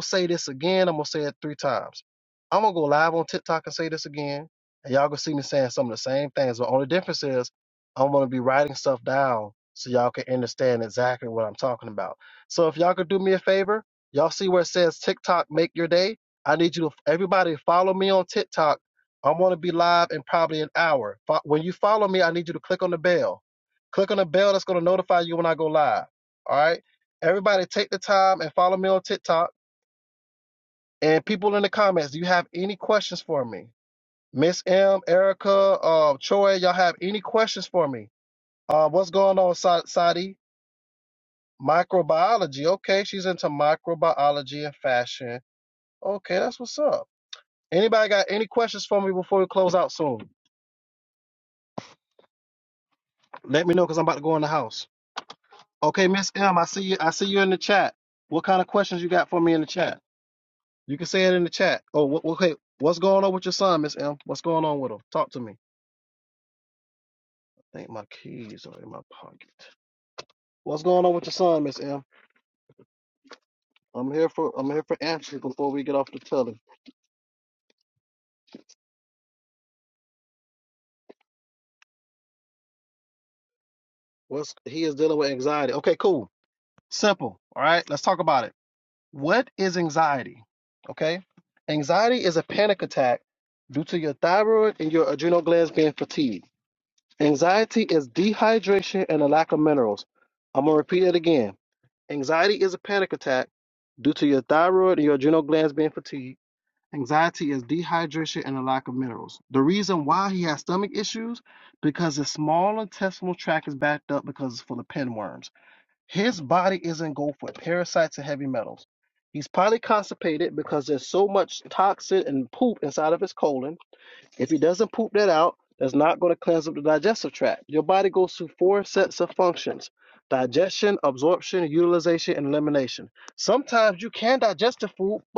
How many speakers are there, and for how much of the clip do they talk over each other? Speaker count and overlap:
1, no overlap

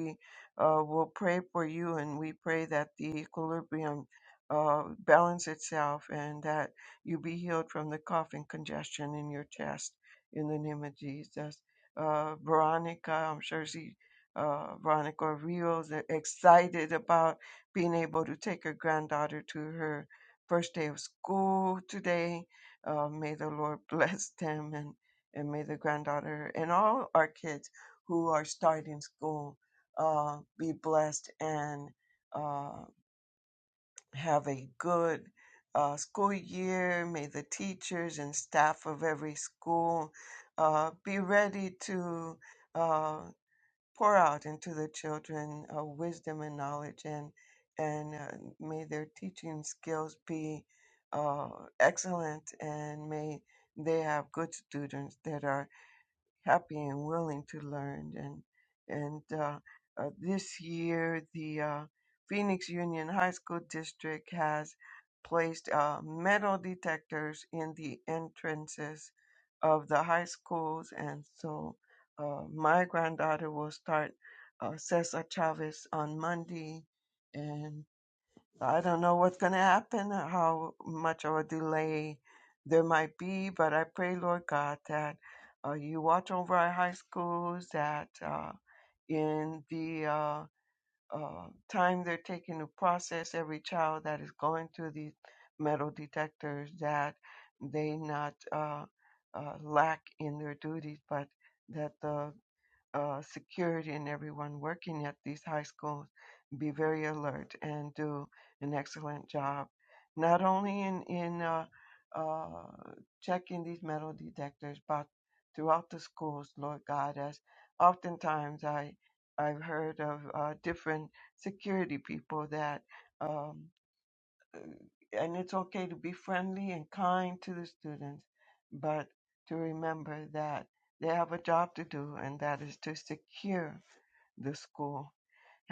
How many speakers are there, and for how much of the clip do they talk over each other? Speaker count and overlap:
1, no overlap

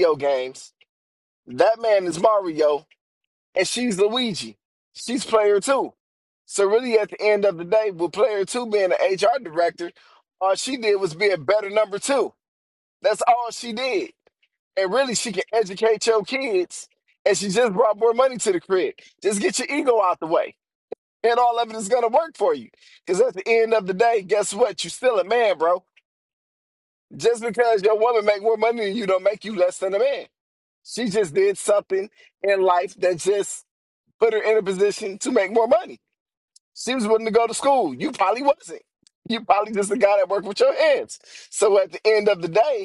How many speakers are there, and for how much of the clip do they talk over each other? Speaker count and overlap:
1, no overlap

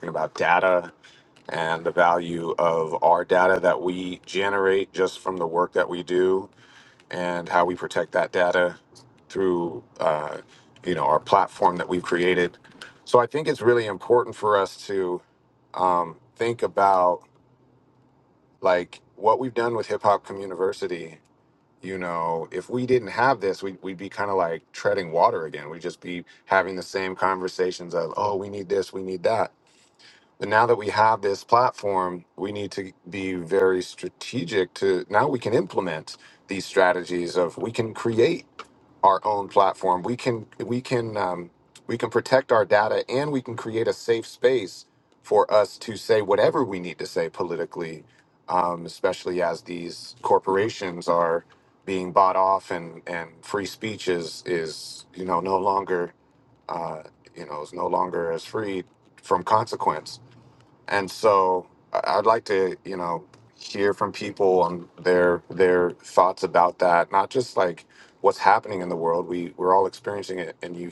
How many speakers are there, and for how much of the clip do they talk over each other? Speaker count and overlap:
1, no overlap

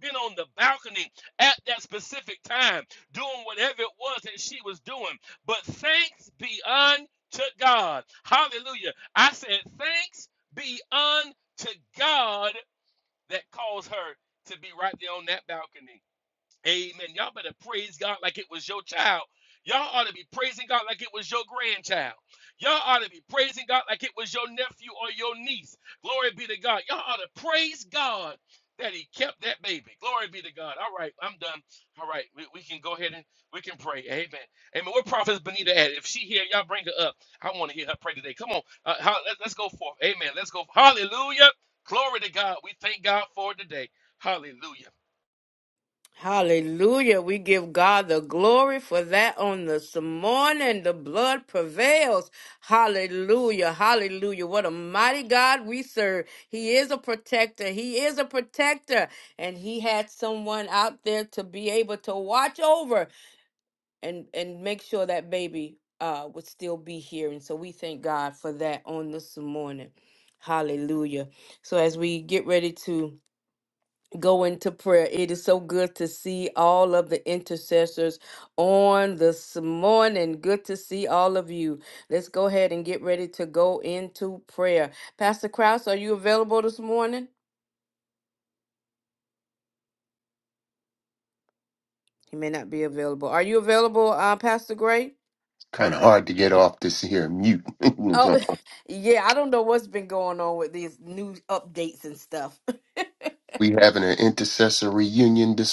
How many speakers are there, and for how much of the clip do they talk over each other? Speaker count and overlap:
3, under 1%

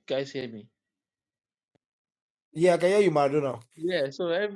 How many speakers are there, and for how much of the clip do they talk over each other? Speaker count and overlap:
2, no overlap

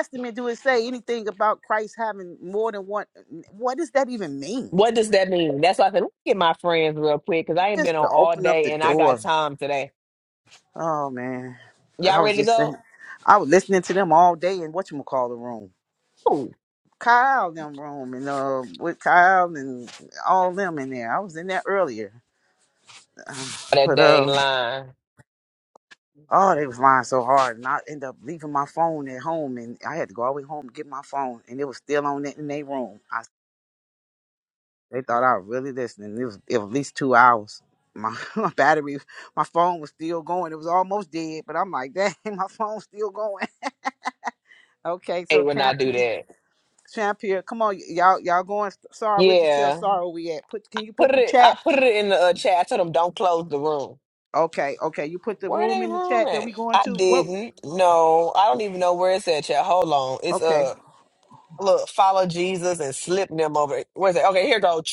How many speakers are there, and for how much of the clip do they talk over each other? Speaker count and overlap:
2, about 11%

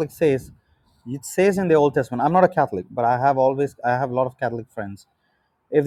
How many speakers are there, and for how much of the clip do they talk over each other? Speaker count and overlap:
1, no overlap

